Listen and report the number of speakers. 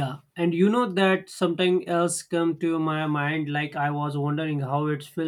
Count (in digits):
1